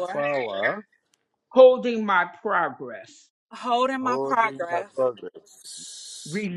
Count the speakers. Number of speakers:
three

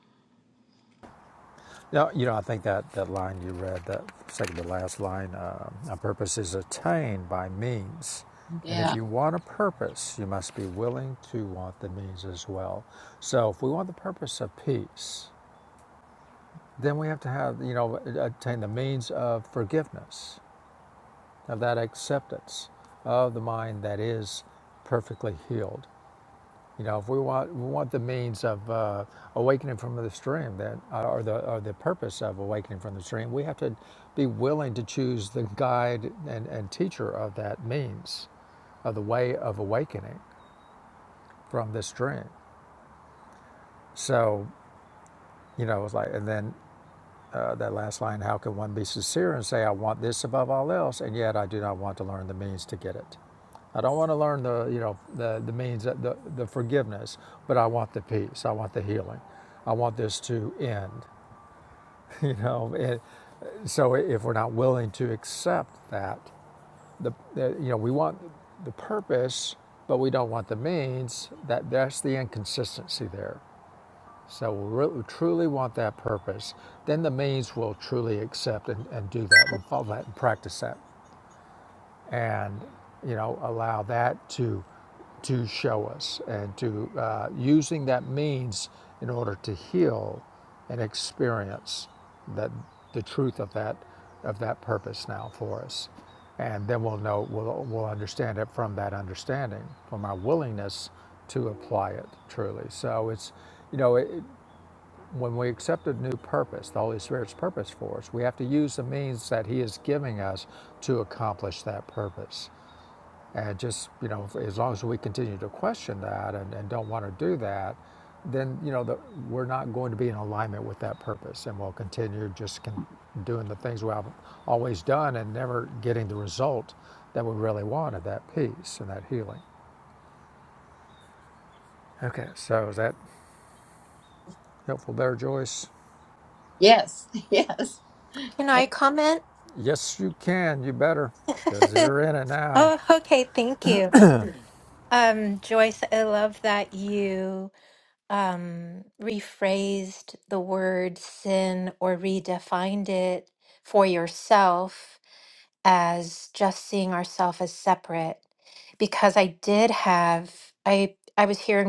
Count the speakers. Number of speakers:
three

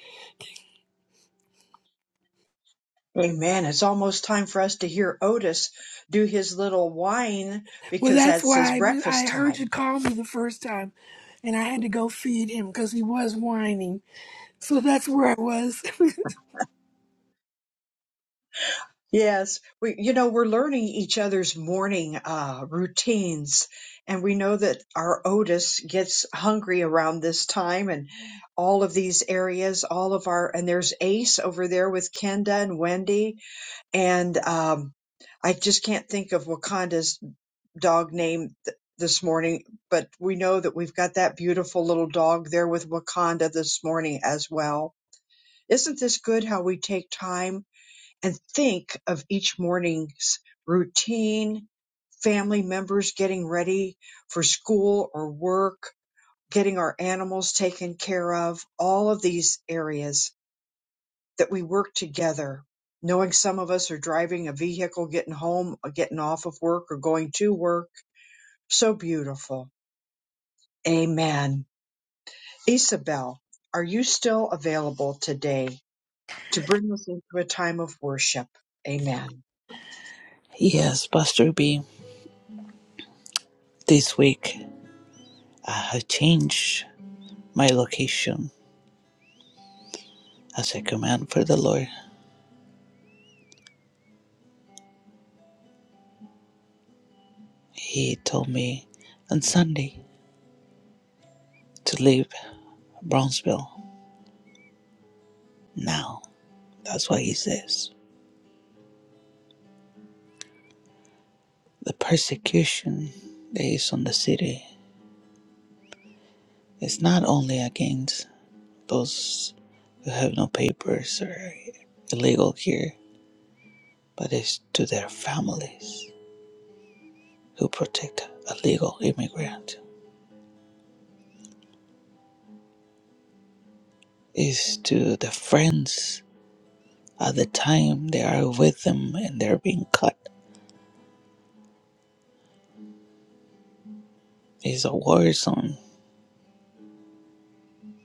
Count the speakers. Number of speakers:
three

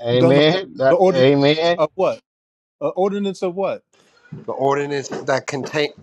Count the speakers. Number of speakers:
three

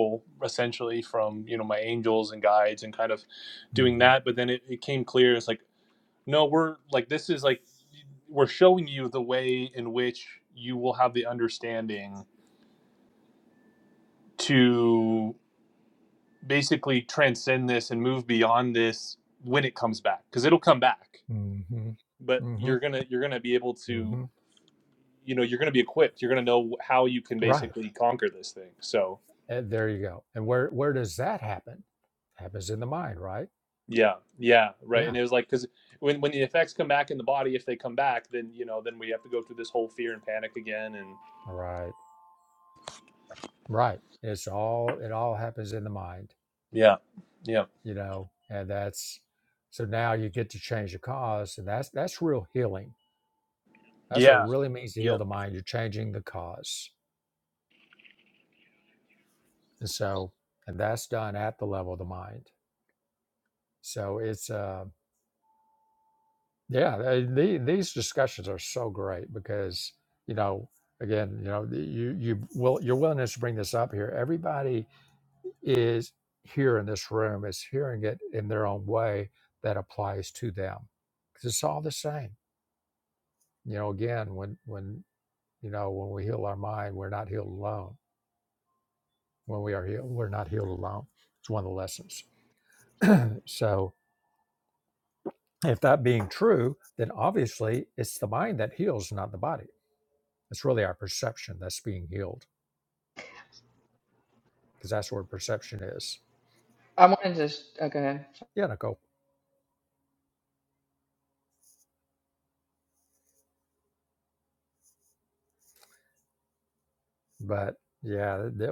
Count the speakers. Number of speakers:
three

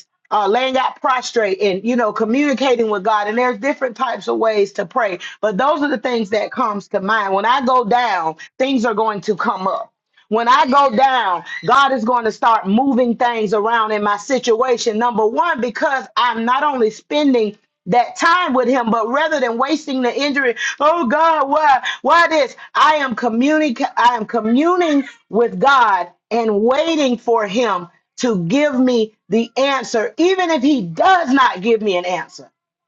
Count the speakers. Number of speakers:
one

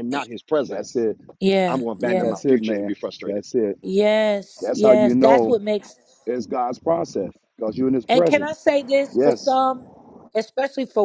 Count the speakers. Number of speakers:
three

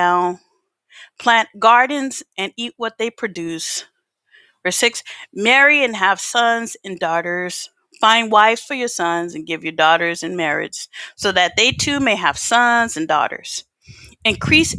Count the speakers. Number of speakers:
one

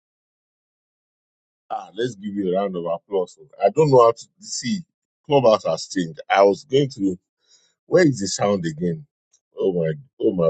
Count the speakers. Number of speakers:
one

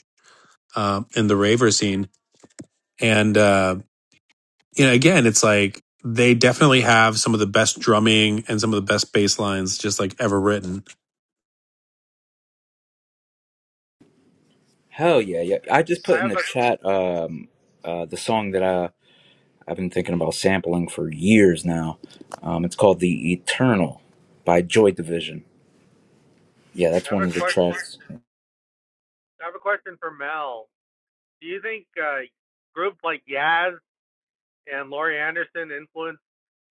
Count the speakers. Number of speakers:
three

